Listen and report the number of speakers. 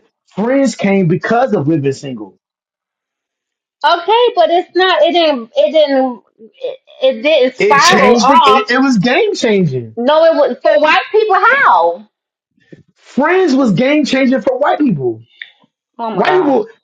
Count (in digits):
2